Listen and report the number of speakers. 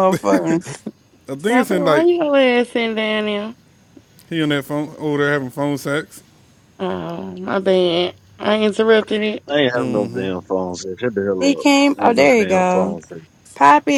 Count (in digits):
4